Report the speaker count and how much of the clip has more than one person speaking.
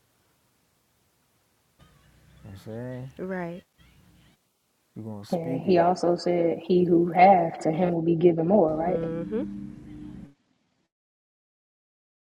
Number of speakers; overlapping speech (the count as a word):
three, about 9%